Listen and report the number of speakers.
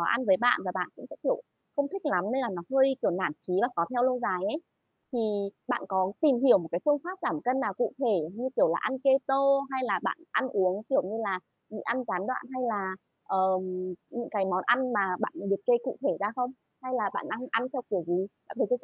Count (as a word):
one